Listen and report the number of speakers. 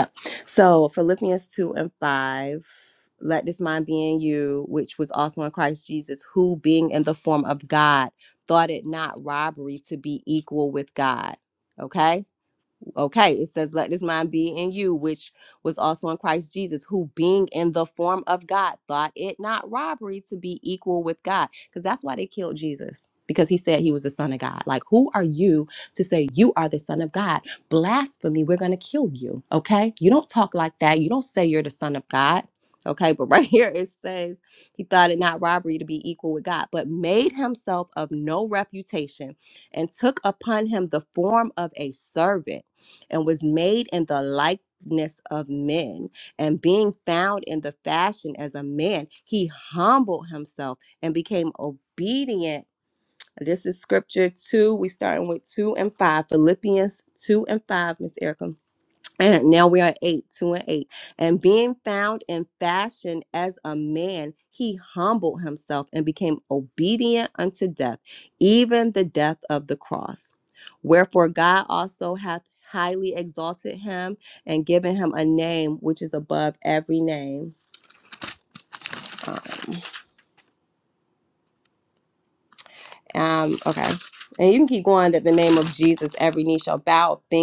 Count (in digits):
1